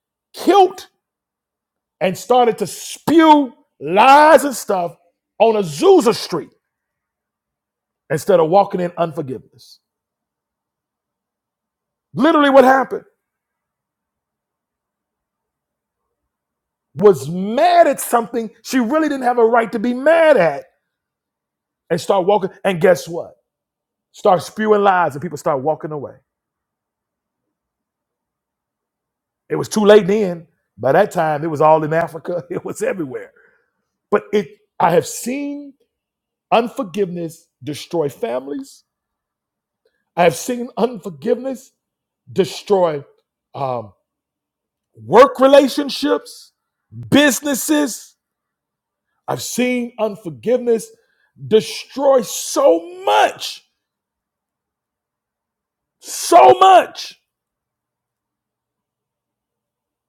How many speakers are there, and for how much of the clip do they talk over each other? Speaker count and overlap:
1, no overlap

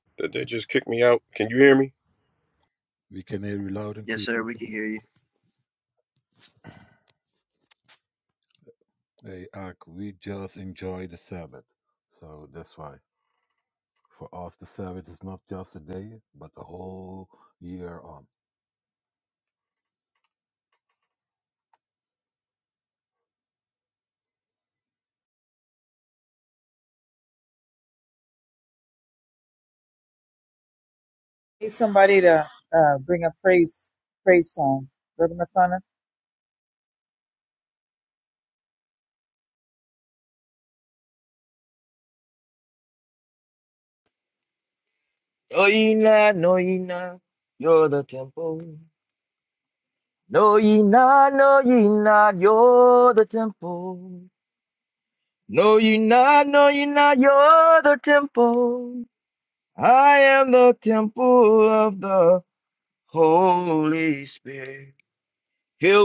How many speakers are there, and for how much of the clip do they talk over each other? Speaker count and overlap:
4, under 1%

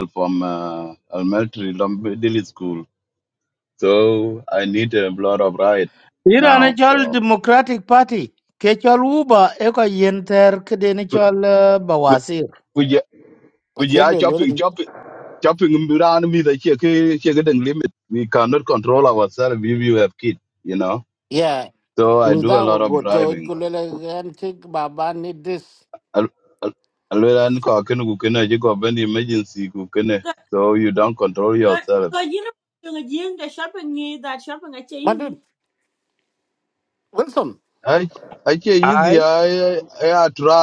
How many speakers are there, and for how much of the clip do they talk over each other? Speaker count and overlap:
4, about 10%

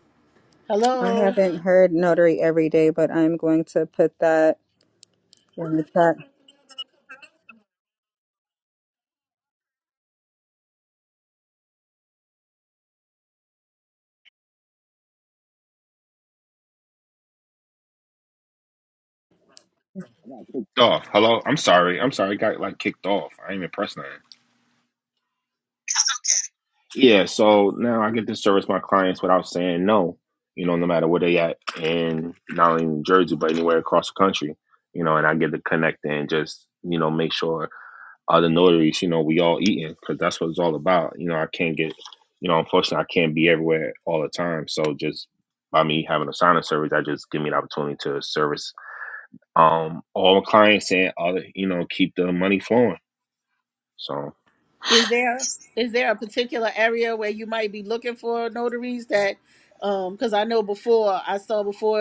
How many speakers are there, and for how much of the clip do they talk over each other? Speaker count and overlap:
3, about 1%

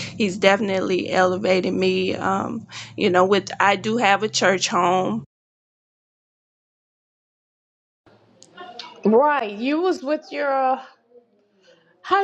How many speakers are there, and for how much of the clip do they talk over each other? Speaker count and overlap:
2, no overlap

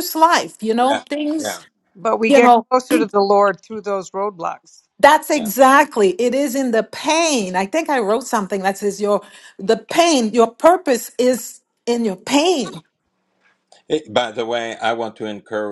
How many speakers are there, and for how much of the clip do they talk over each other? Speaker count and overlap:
3, about 5%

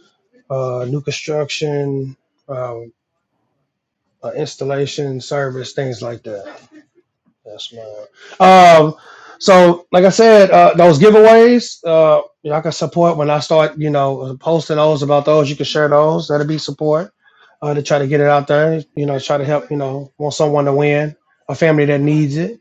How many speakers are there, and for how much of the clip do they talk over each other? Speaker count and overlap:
1, no overlap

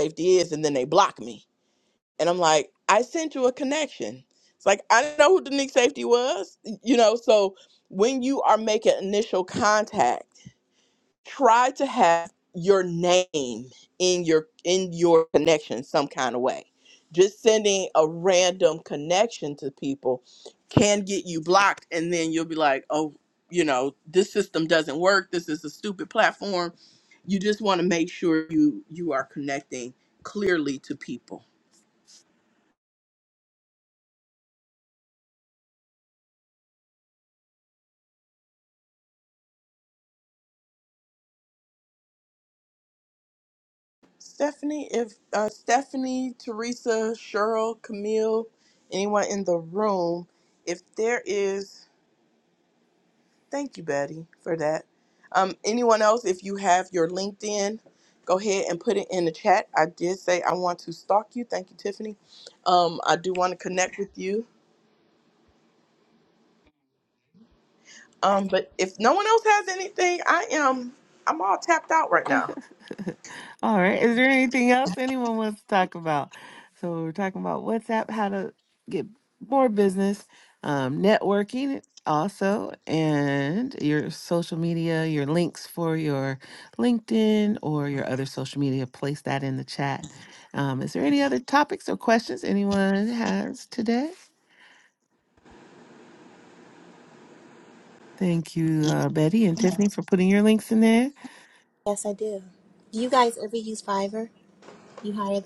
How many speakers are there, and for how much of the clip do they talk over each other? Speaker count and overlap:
3, under 1%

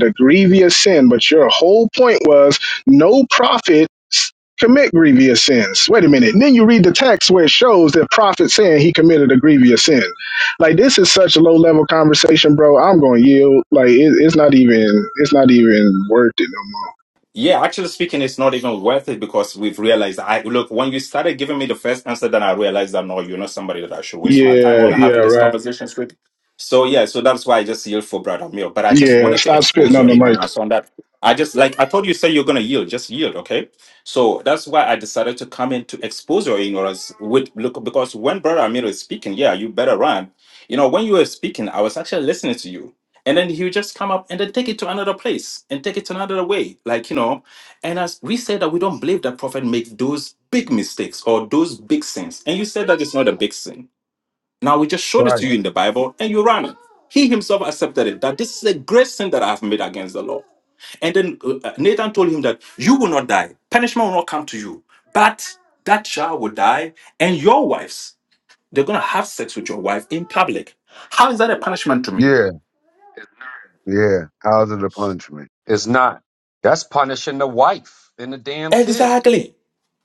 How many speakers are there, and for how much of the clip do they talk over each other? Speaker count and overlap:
4, about 4%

